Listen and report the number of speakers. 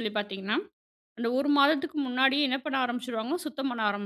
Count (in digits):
1